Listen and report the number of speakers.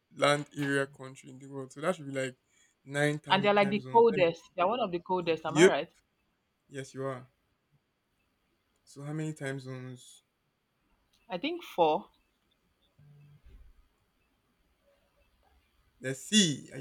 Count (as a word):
two